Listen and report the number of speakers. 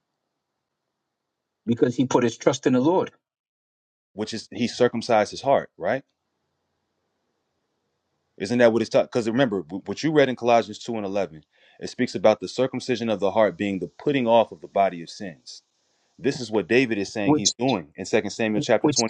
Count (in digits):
2